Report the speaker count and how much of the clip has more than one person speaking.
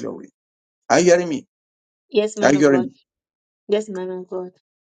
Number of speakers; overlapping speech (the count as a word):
two, about 10%